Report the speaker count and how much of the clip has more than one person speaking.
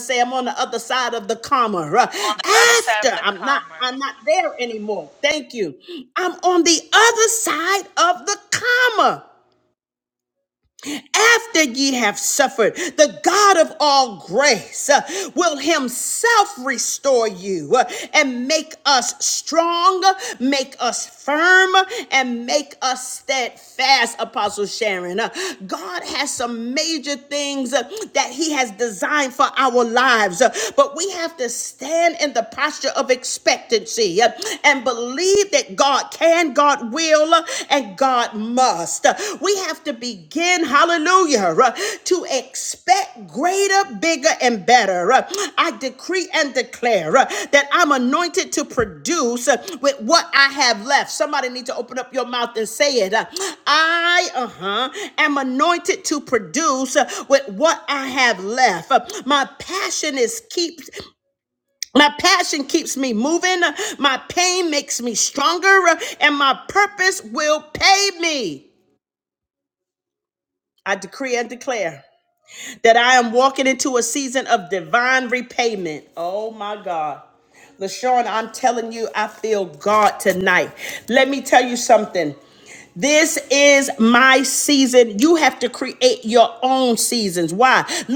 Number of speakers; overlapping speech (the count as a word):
two, about 1%